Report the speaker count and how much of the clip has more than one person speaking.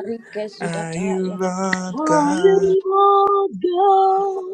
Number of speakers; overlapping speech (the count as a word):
three, about 37%